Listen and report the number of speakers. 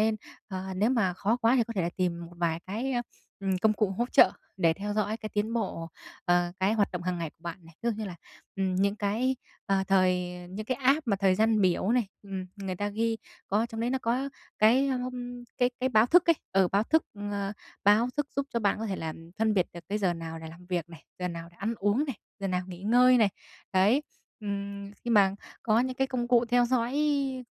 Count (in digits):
1